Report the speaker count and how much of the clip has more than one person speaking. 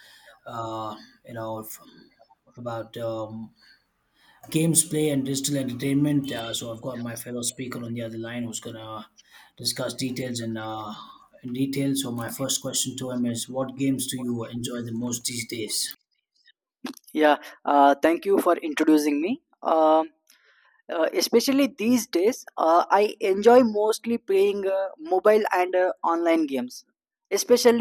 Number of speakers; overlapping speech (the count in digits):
2, no overlap